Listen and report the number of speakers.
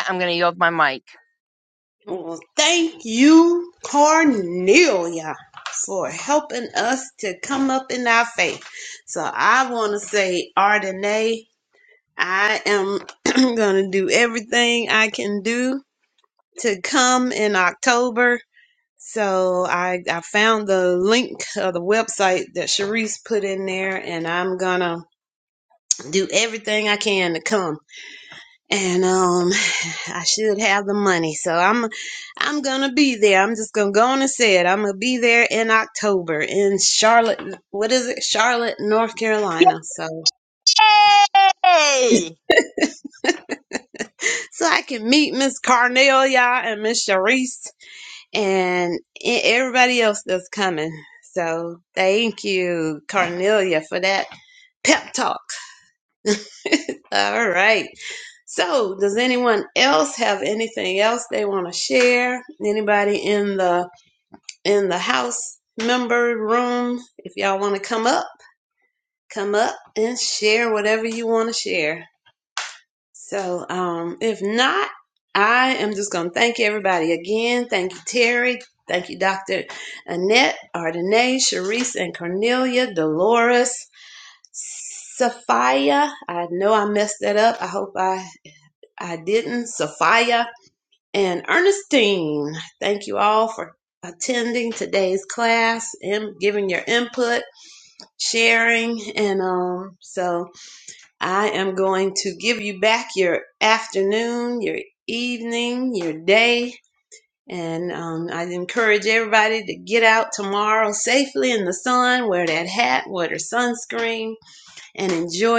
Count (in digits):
2